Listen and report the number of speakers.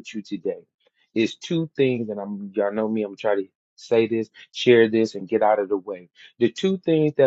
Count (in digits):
1